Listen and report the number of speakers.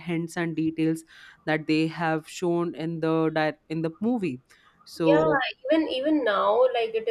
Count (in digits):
2